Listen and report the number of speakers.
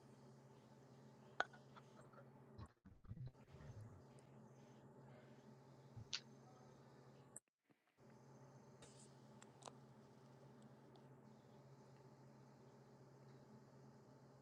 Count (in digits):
0